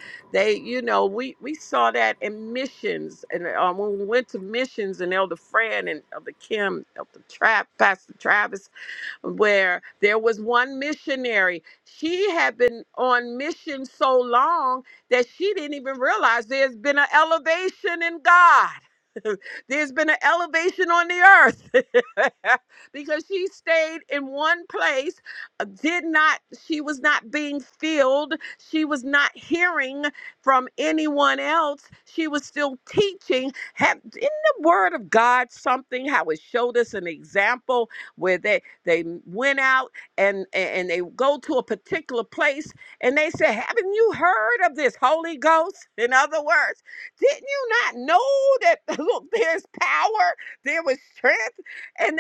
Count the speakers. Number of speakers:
1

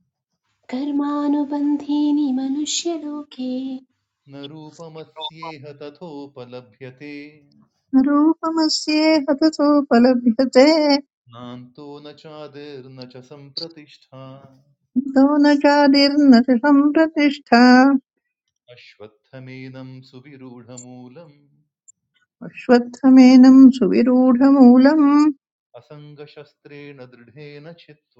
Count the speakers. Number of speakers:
3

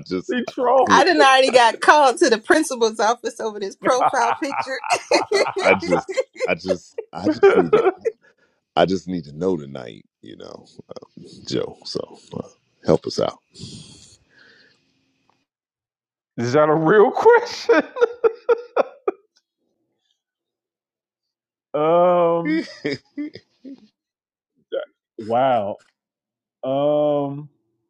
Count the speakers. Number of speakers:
3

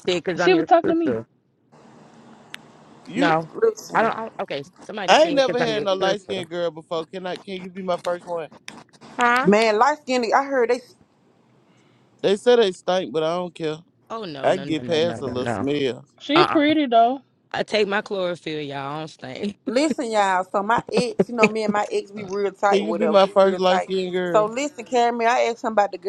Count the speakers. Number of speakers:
4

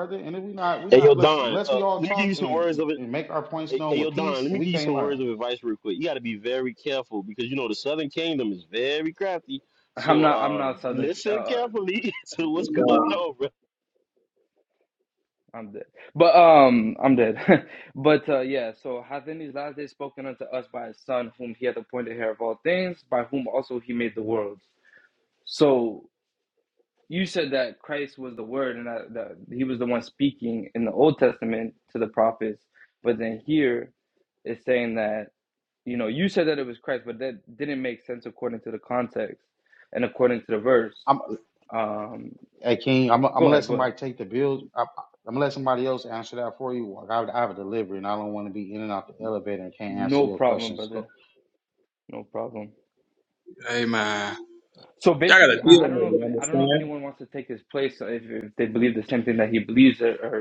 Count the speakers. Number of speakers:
4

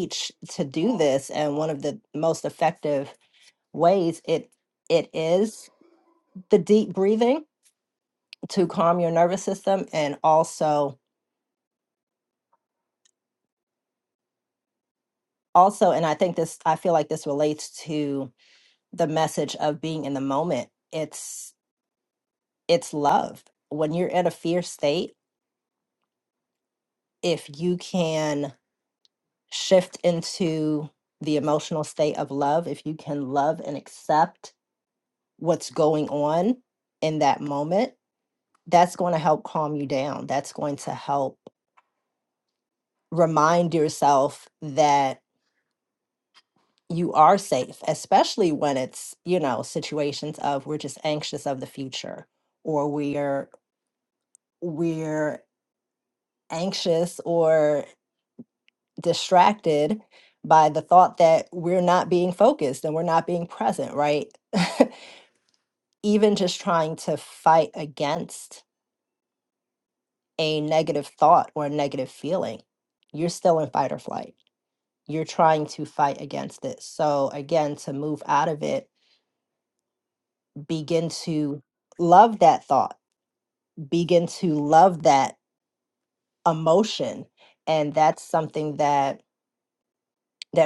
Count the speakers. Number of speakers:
1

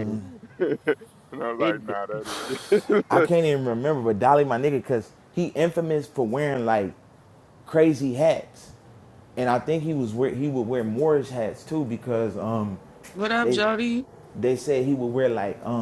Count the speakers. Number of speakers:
3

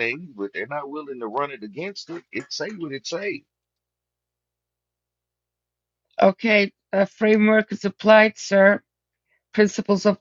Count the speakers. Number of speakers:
2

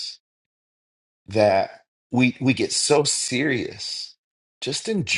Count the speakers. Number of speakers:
1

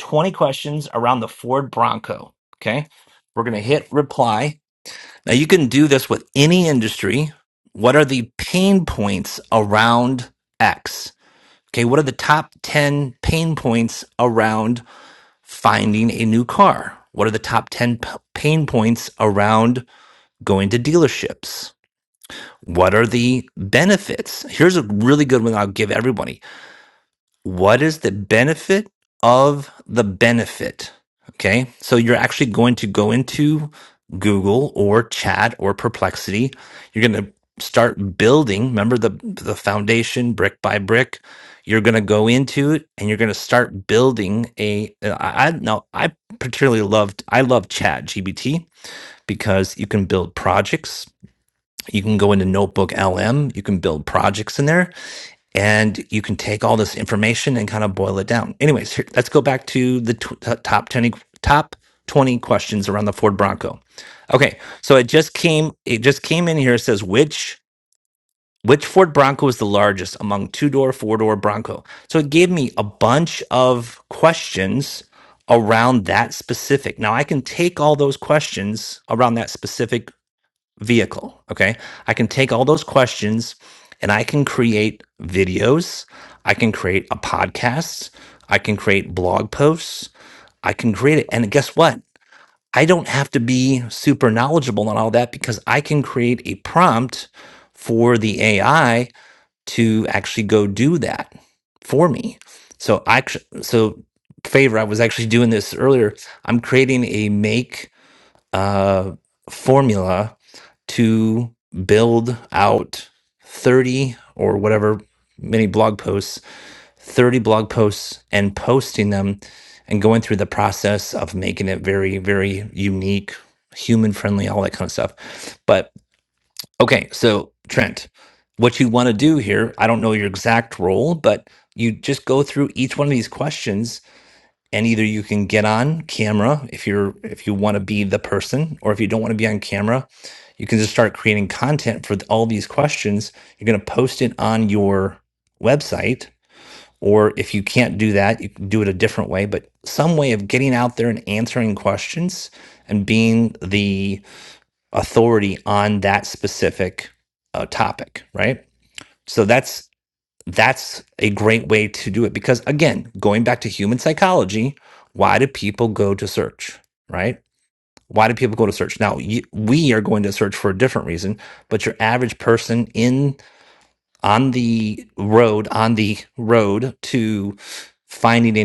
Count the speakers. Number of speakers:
1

